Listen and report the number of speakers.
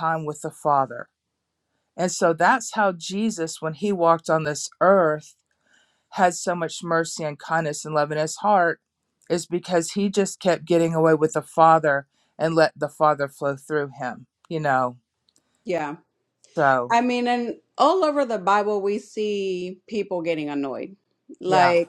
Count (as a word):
two